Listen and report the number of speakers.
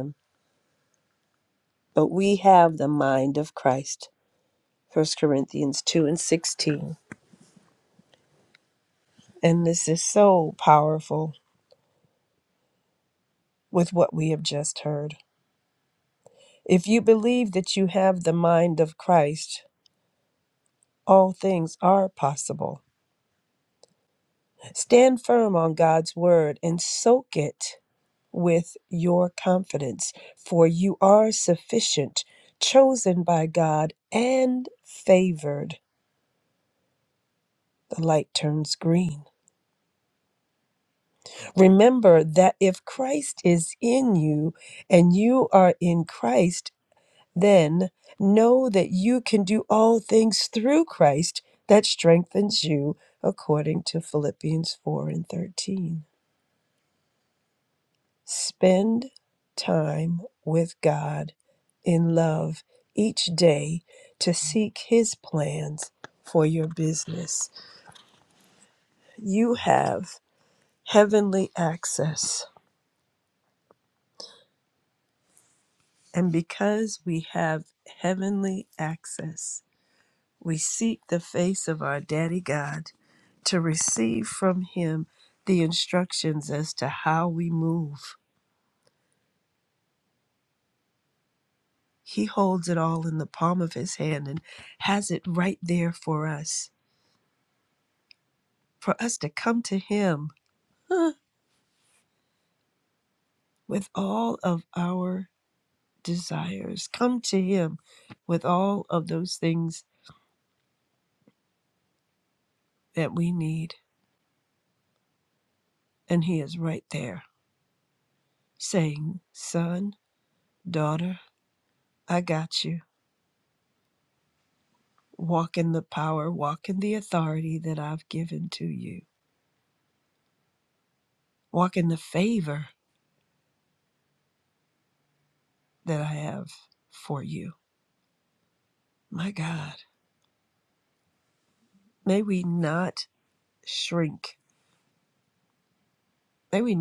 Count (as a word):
one